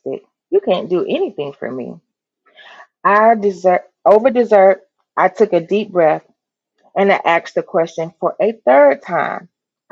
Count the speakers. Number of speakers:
1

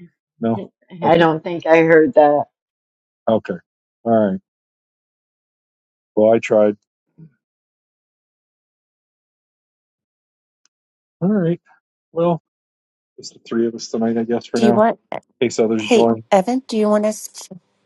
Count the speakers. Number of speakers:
3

